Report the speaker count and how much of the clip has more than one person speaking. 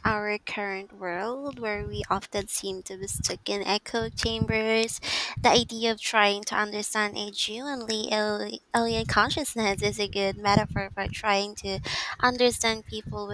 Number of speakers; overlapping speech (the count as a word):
one, no overlap